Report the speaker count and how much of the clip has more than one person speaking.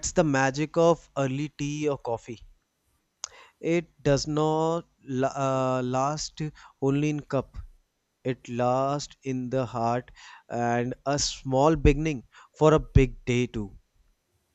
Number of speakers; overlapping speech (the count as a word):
one, no overlap